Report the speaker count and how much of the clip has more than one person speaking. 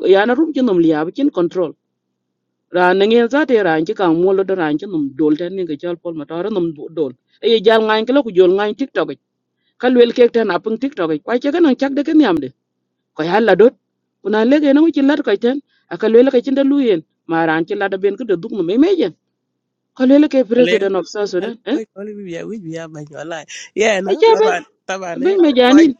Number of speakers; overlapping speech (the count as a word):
two, about 6%